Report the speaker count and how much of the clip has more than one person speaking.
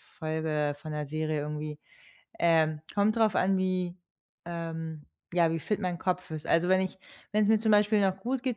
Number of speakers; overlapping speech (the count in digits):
1, no overlap